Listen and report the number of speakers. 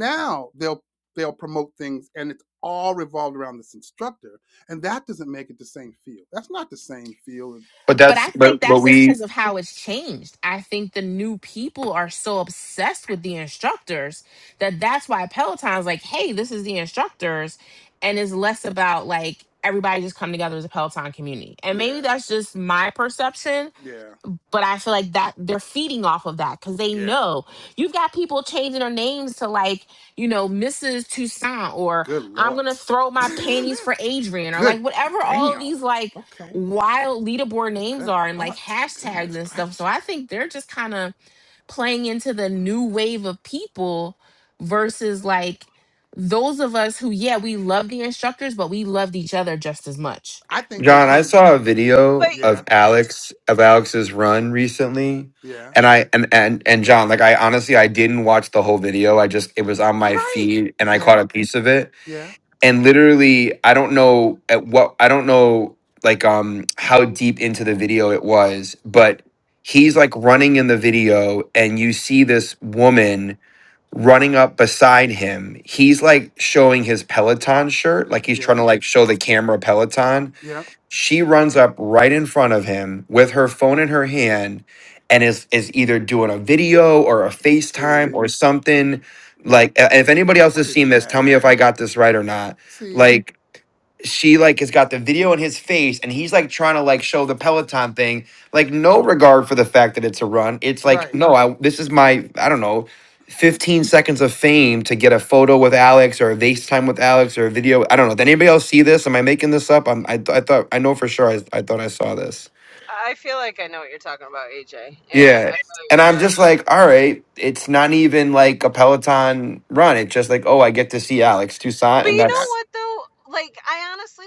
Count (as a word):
four